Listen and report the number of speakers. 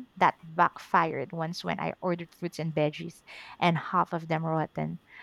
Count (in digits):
1